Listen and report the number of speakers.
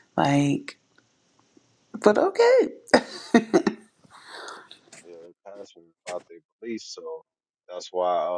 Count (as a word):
two